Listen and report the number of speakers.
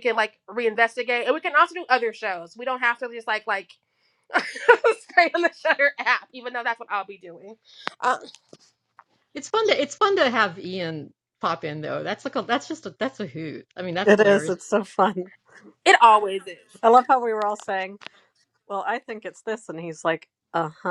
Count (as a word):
three